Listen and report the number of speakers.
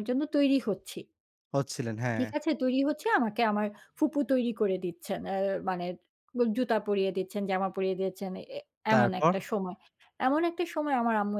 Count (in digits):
2